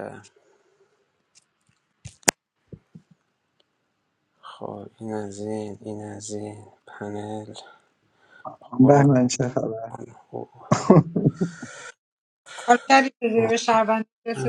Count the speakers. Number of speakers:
3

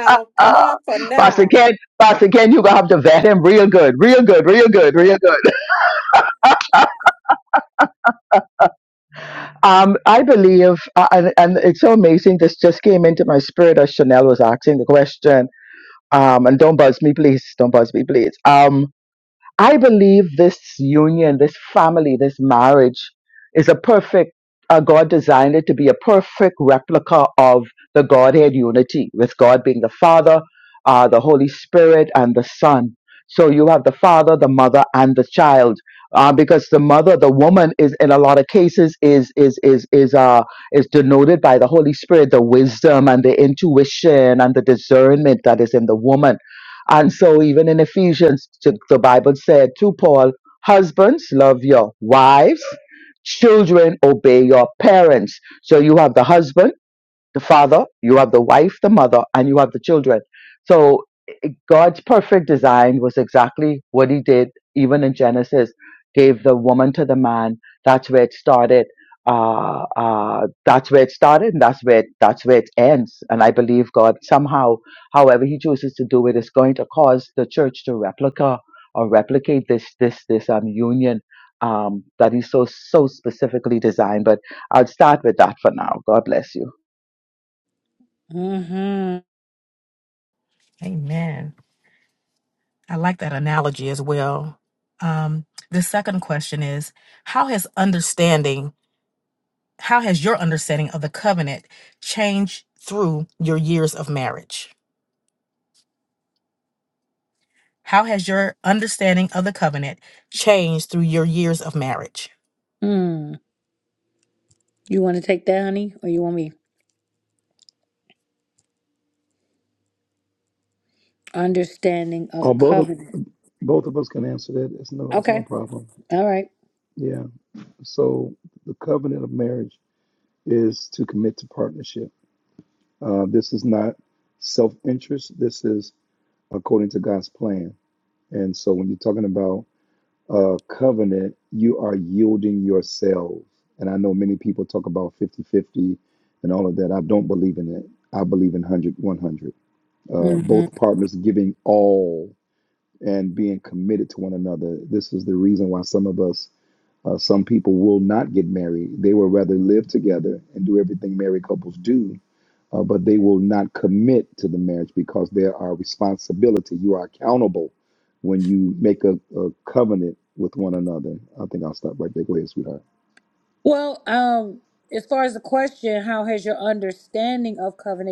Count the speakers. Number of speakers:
5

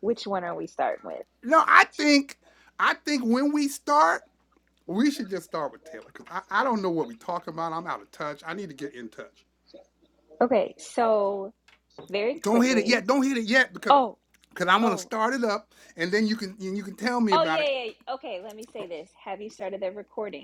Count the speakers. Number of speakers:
2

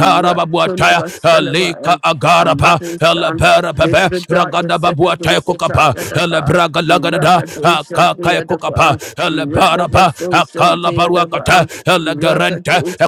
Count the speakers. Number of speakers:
2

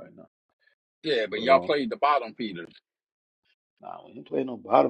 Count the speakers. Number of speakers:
2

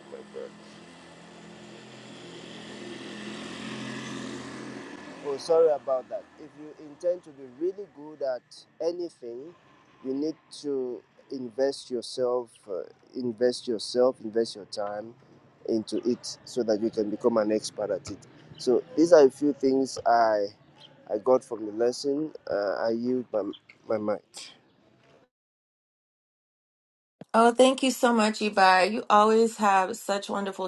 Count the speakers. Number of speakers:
2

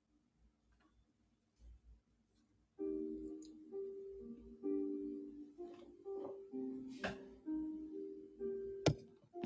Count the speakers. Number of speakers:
0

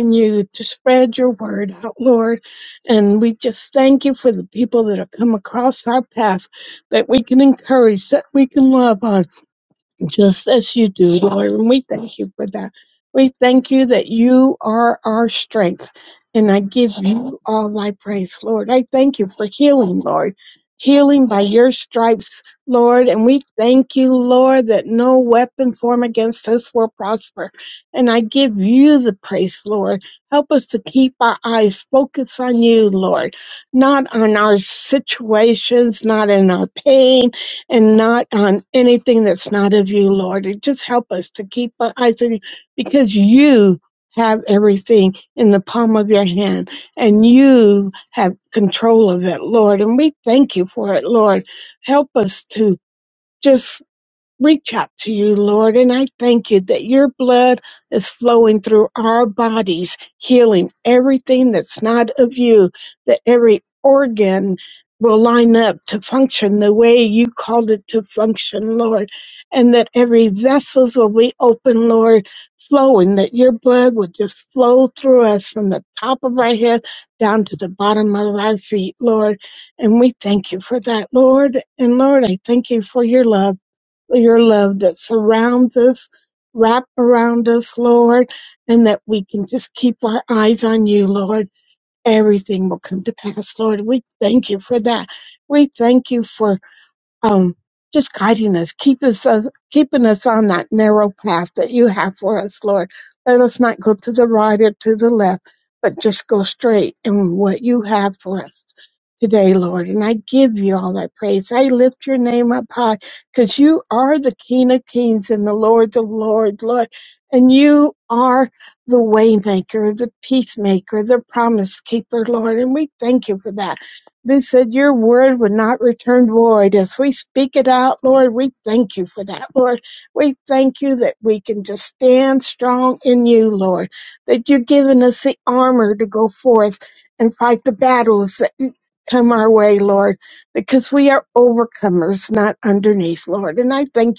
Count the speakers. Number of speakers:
1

